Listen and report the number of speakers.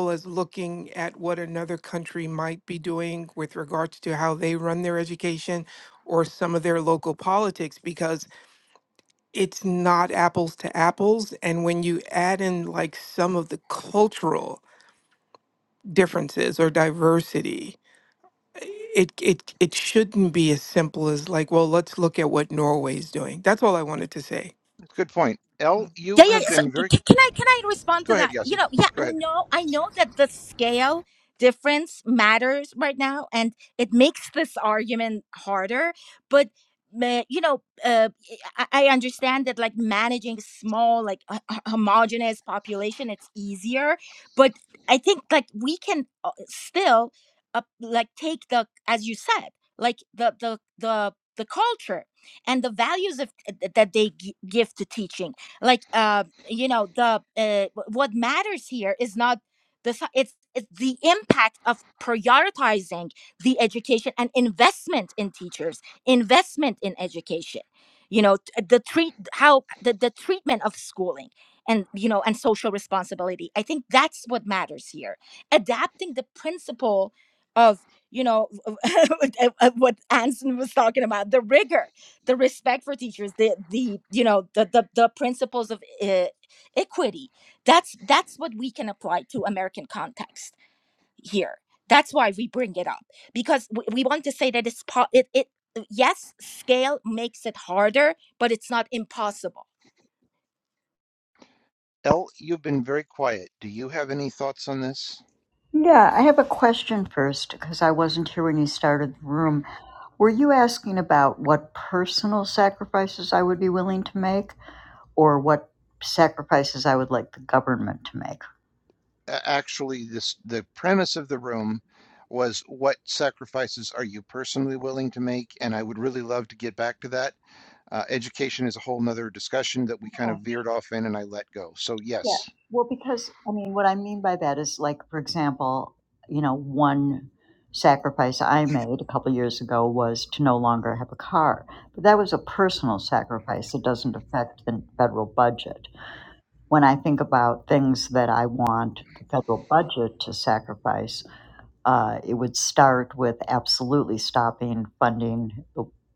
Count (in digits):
4